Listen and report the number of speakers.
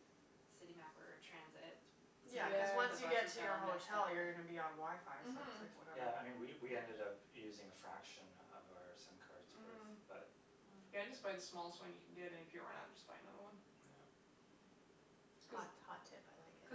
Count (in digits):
4